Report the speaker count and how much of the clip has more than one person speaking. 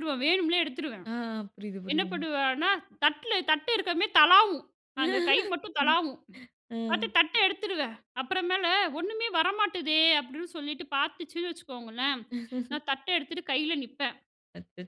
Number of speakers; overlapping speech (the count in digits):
2, about 3%